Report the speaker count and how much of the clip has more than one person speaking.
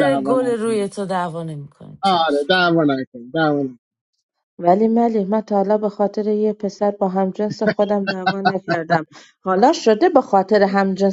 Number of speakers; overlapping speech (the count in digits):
3, about 9%